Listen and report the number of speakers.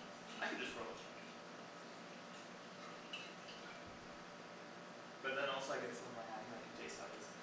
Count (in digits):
1